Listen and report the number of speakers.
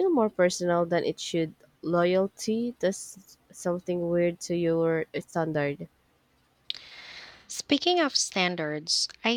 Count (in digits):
2